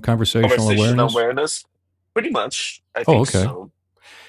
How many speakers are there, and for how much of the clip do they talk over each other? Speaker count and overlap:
2, about 30%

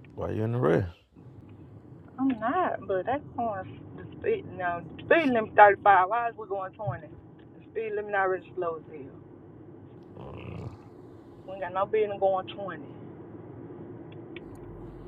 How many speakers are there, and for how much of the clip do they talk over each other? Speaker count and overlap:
2, no overlap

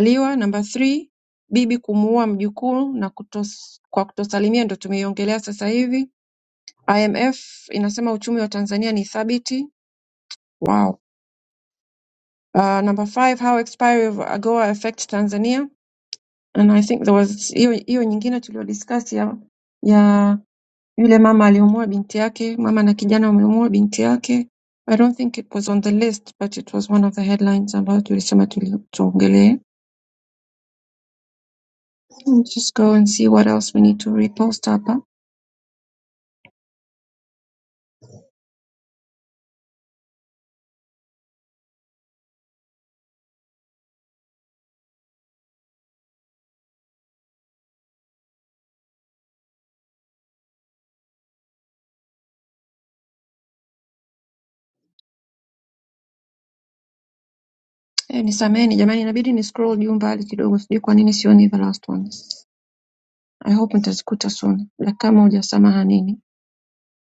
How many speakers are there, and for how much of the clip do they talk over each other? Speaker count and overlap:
1, no overlap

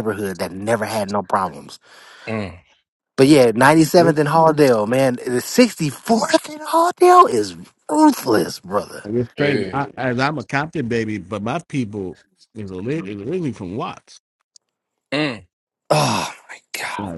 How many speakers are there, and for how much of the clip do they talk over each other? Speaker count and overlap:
3, about 4%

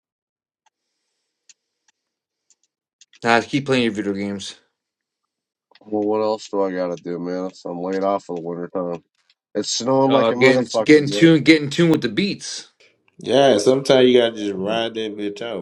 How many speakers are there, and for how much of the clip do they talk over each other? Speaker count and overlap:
3, about 8%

